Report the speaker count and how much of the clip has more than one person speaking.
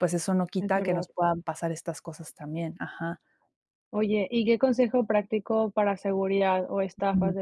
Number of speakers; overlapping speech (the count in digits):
2, about 9%